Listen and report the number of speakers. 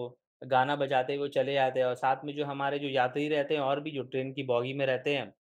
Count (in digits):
1